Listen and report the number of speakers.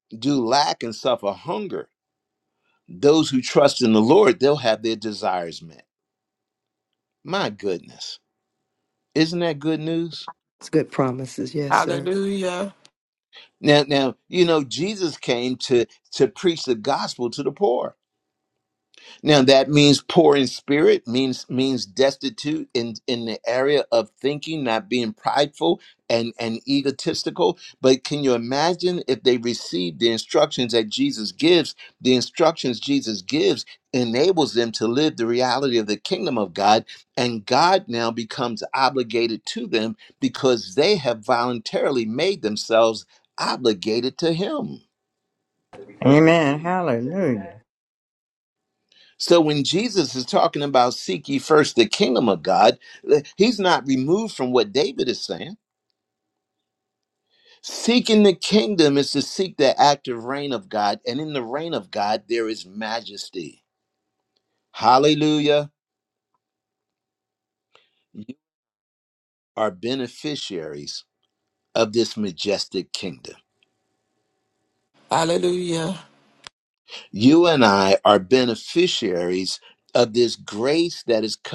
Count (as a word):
four